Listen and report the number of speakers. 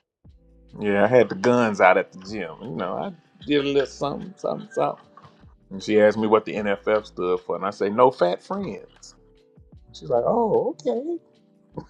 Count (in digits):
1